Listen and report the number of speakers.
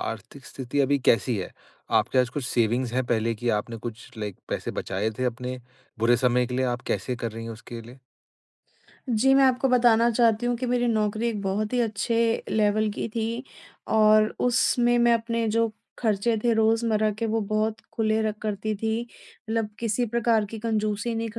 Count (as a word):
two